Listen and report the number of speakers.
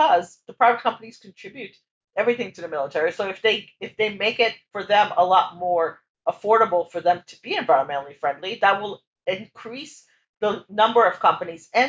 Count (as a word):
one